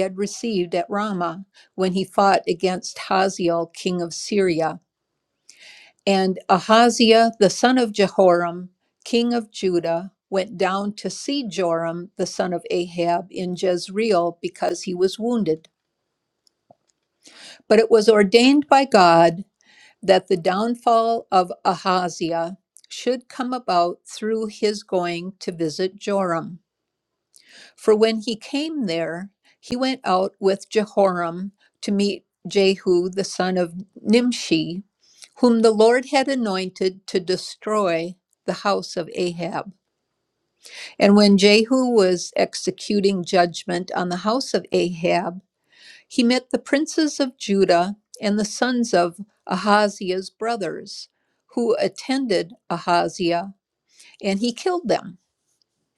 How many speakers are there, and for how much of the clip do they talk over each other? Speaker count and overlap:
one, no overlap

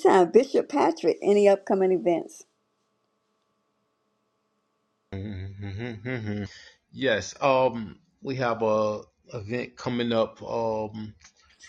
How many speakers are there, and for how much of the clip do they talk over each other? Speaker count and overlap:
two, no overlap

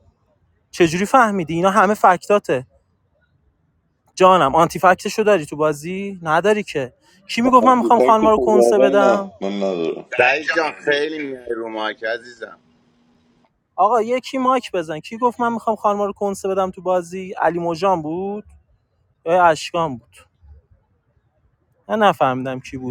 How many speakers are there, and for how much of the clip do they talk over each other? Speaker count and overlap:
three, about 8%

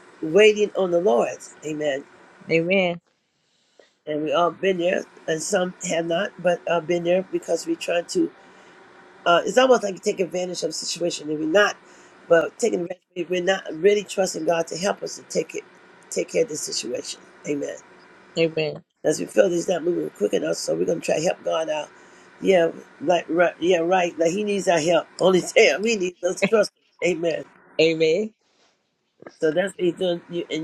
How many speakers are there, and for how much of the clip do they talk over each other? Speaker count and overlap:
two, no overlap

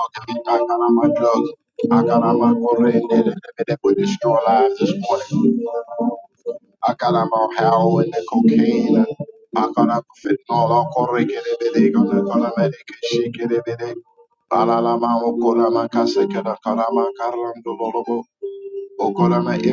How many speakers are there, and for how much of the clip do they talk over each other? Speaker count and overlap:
one, no overlap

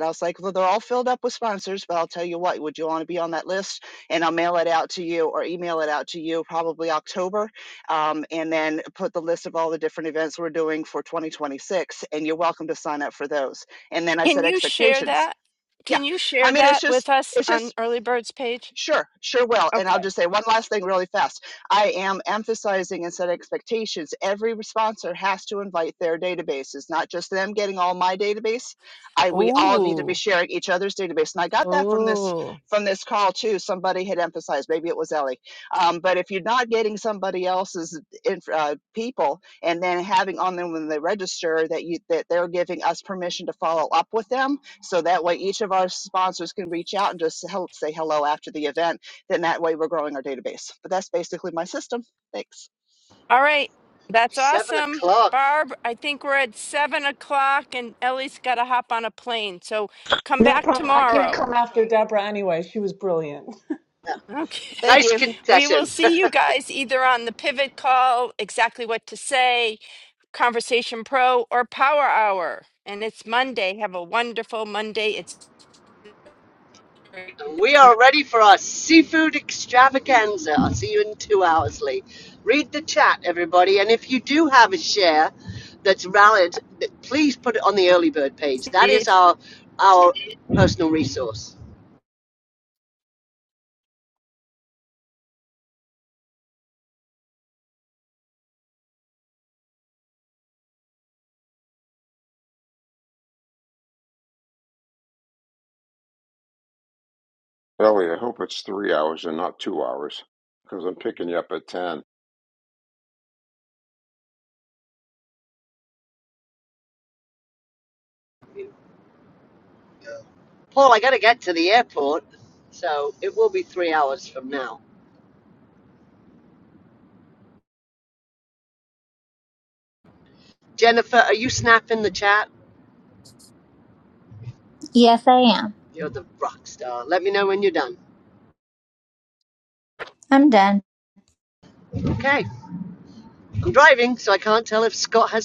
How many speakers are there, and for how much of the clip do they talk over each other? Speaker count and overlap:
six, about 5%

